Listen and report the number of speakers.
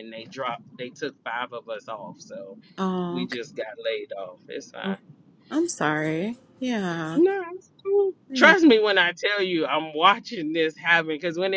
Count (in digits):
2